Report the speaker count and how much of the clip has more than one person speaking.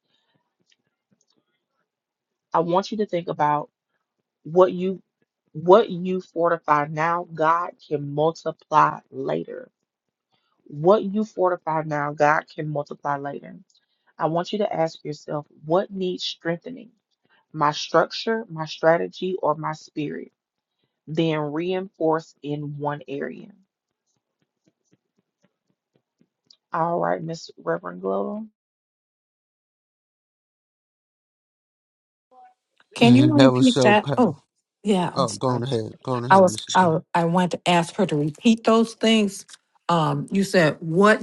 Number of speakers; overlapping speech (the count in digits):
3, about 5%